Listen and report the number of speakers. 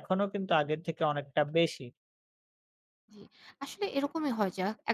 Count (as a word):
two